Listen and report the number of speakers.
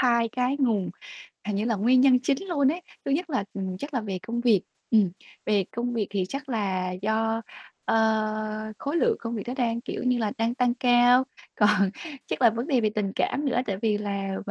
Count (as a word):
one